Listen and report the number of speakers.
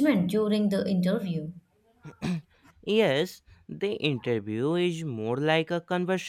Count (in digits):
2